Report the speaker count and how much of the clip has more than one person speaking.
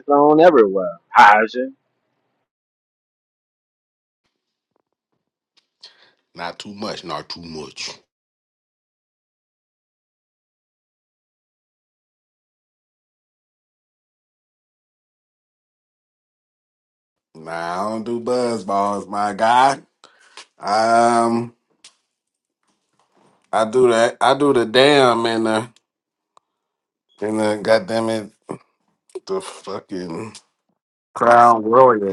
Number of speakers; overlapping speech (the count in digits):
2, no overlap